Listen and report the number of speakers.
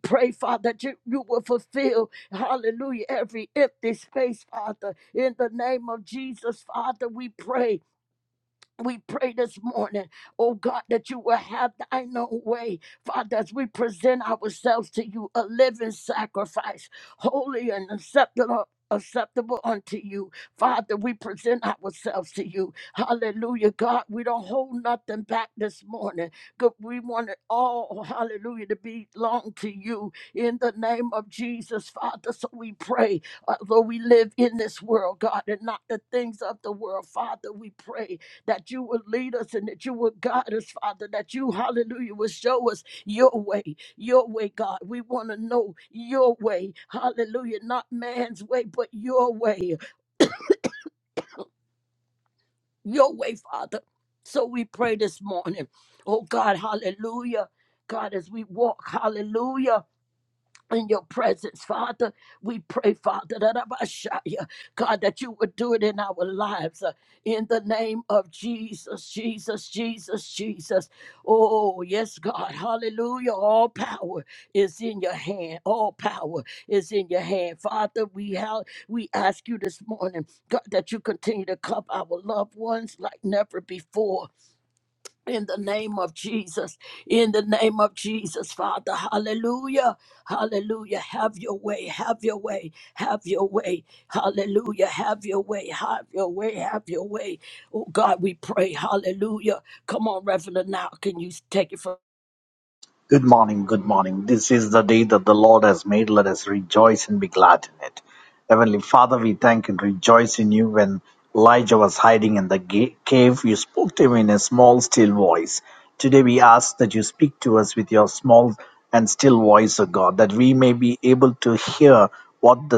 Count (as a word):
two